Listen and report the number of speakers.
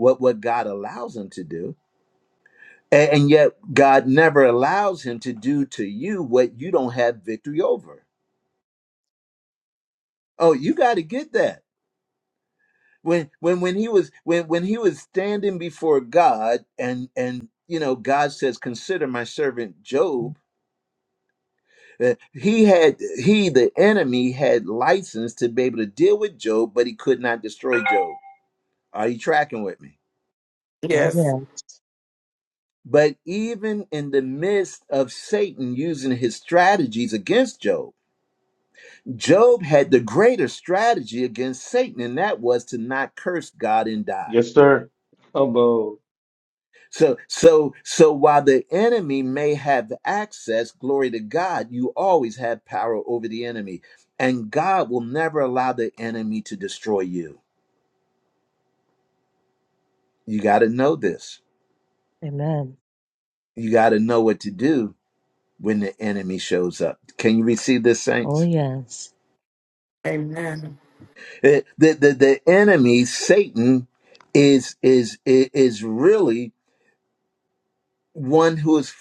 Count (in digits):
4